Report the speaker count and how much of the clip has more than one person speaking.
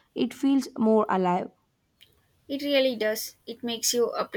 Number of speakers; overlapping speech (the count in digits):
2, no overlap